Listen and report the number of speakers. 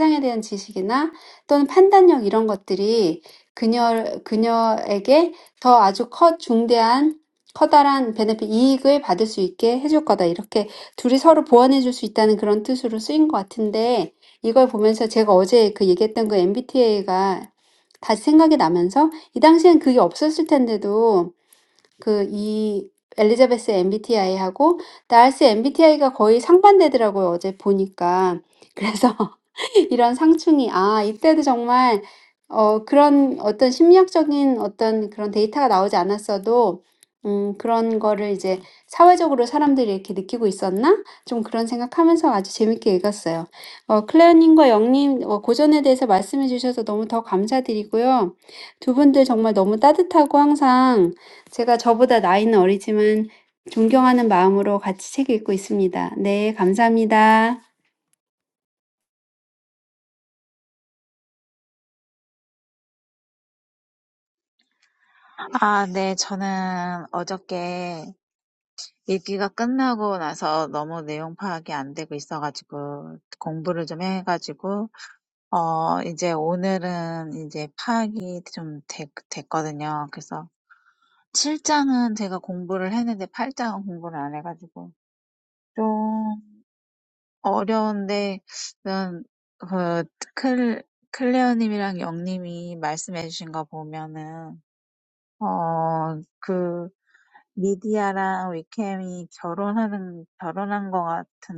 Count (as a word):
two